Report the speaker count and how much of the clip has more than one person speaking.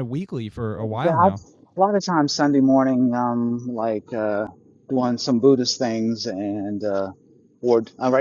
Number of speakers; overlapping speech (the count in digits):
2, about 5%